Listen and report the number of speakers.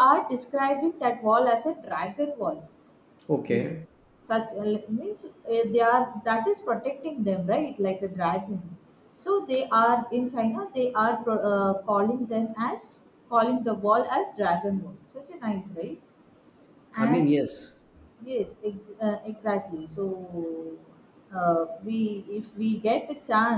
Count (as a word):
two